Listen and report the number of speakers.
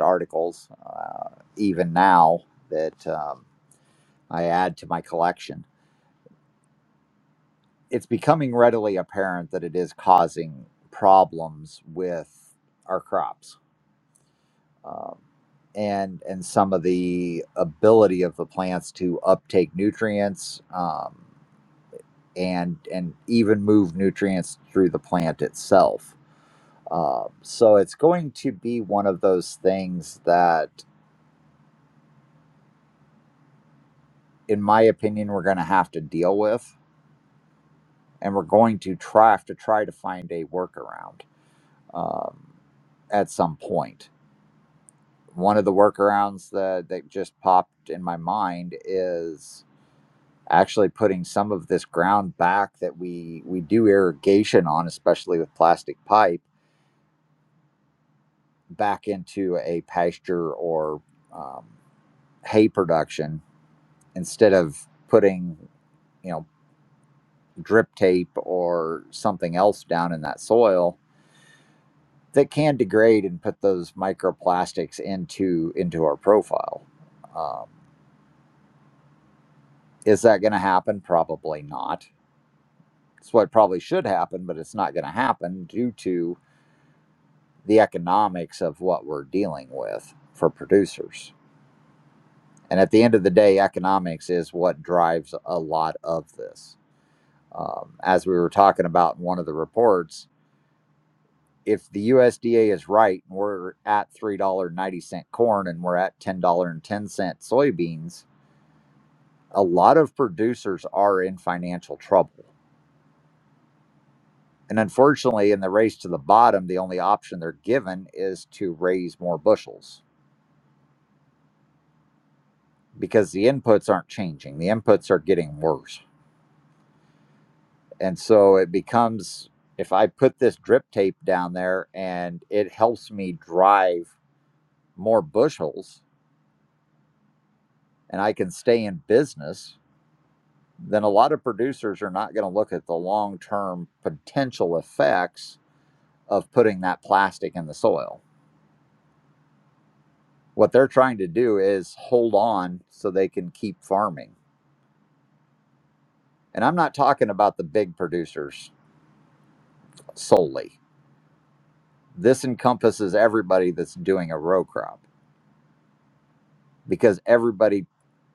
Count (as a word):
one